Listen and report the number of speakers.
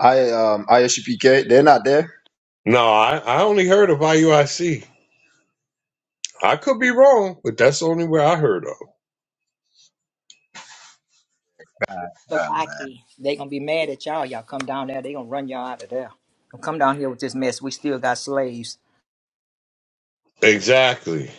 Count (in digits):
3